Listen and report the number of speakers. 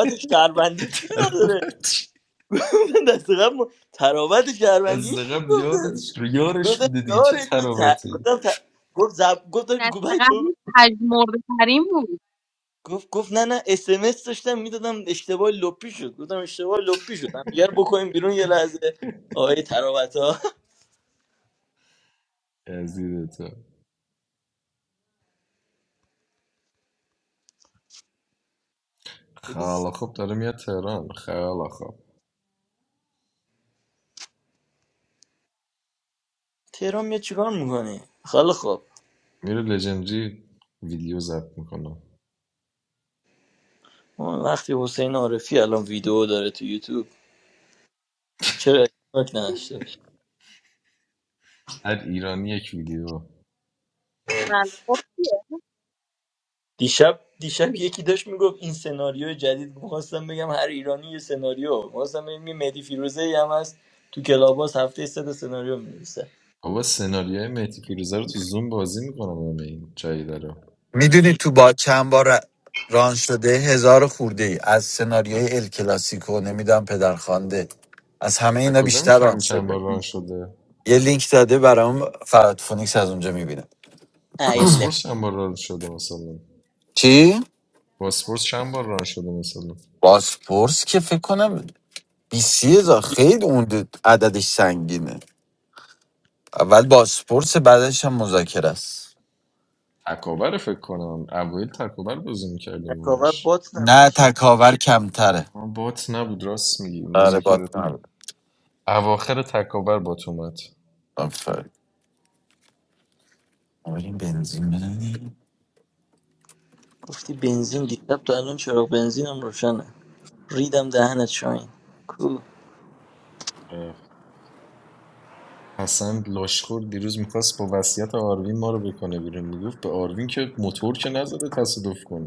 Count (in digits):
4